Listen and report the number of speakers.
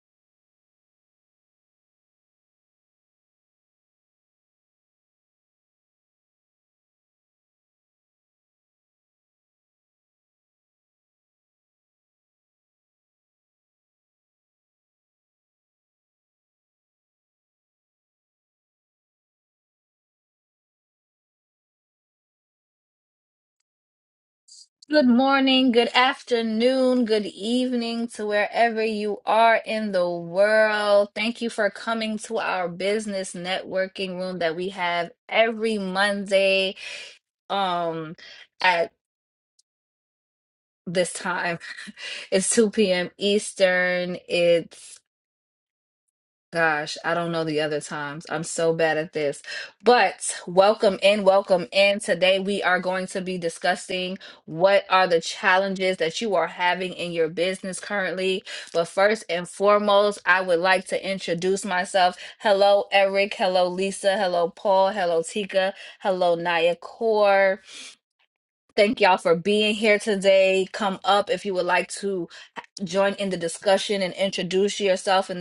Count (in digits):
1